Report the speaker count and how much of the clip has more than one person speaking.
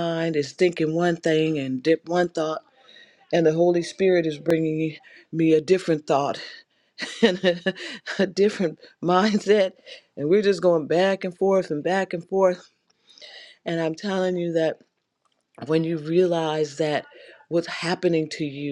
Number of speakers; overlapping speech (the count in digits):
1, no overlap